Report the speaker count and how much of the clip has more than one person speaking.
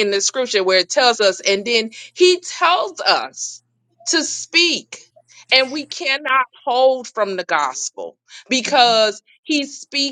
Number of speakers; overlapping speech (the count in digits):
1, no overlap